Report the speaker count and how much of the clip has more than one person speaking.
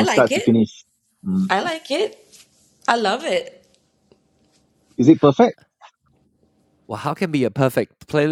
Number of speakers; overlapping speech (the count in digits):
3, about 6%